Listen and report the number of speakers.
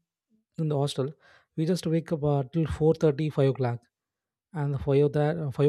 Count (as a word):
one